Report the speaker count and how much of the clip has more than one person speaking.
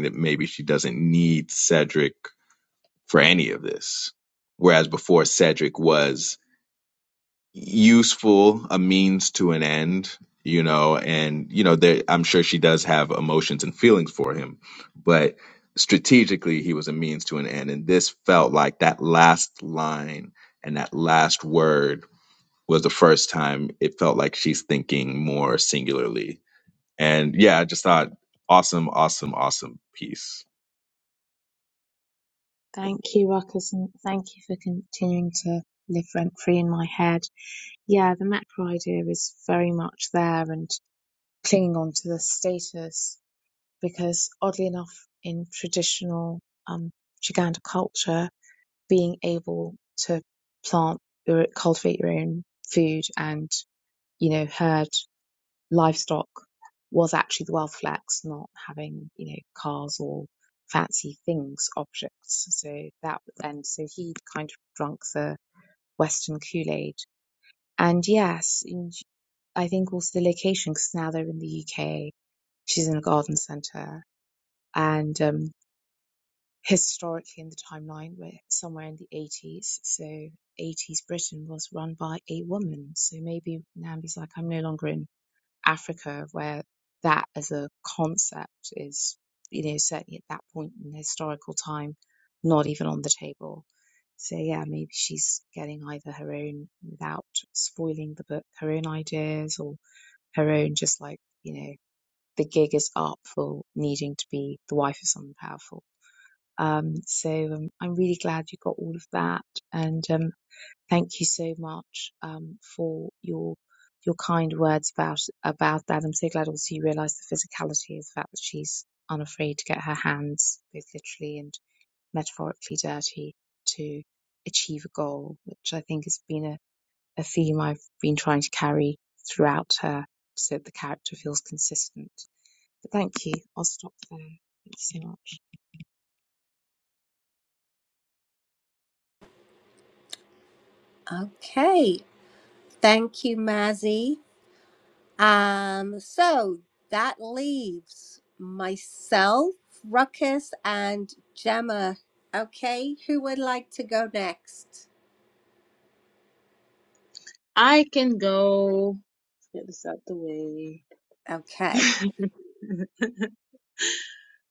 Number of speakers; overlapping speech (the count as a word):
four, no overlap